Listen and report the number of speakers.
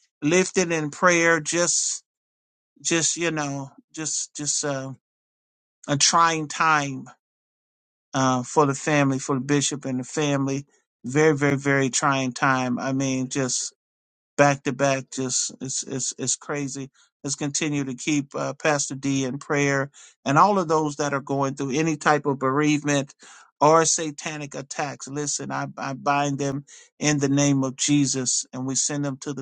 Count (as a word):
one